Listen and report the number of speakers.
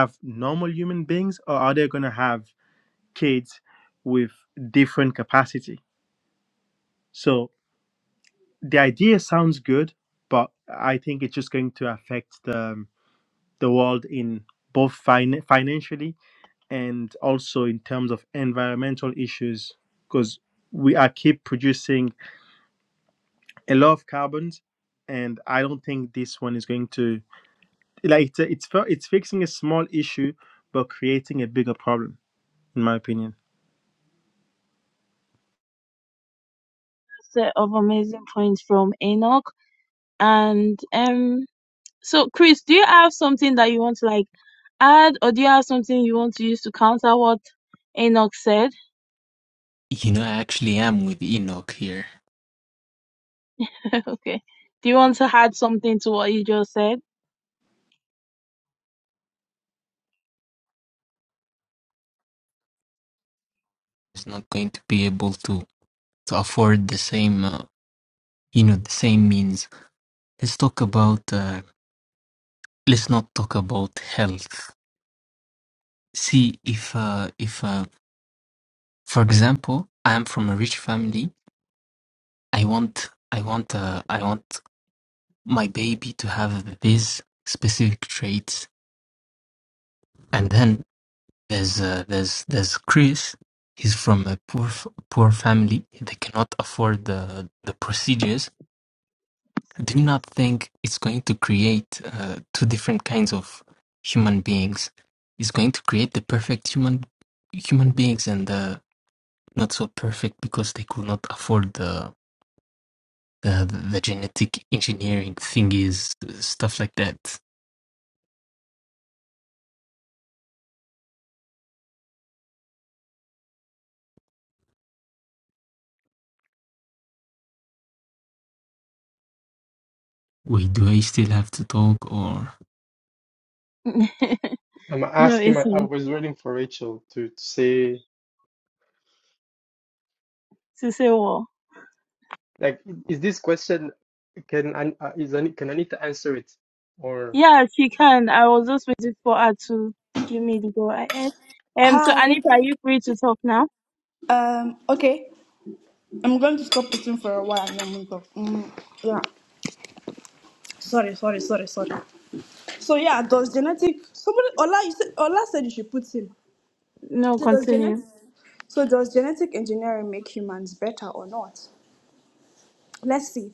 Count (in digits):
5